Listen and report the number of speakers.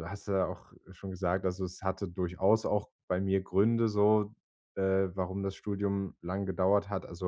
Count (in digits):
1